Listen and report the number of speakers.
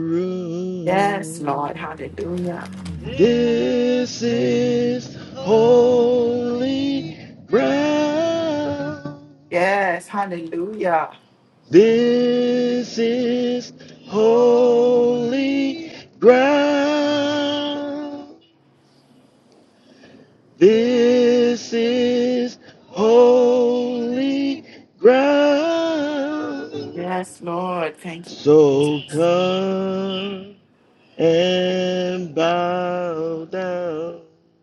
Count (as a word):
two